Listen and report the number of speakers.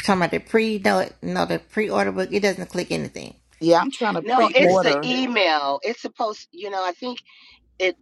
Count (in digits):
3